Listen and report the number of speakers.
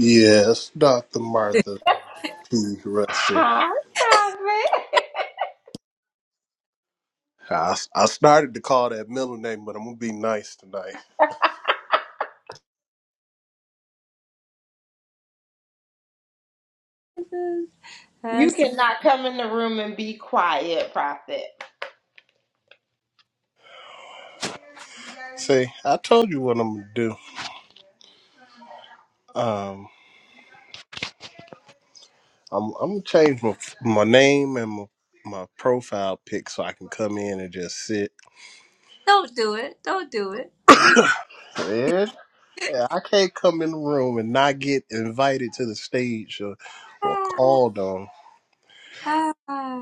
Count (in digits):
3